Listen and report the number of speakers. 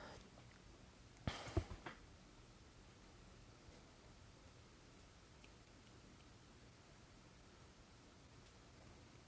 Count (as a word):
zero